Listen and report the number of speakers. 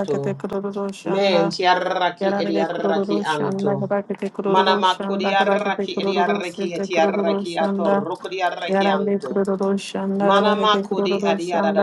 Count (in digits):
2